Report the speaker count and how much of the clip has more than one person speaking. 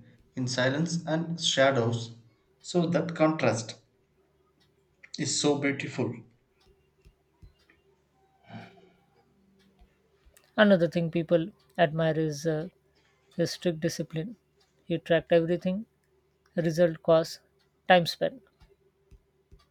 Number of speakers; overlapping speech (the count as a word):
two, no overlap